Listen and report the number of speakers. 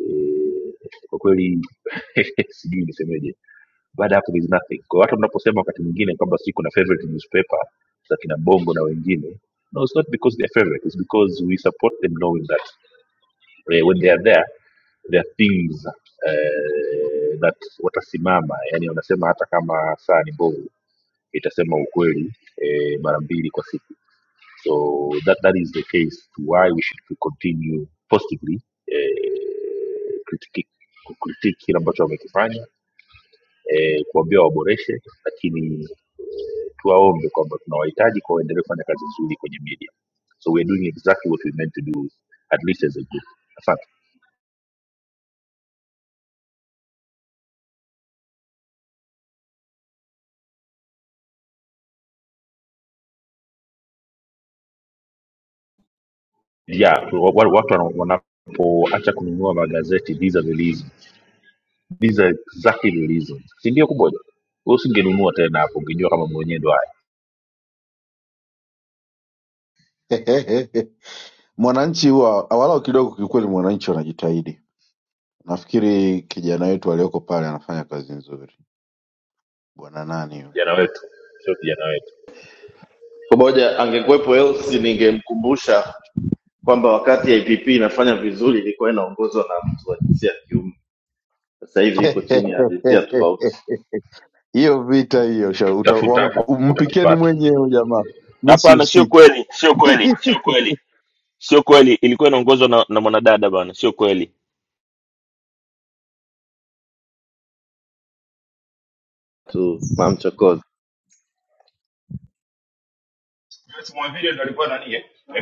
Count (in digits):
5